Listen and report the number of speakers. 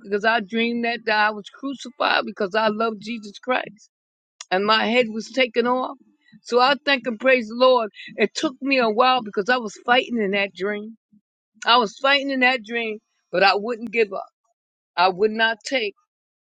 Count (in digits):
1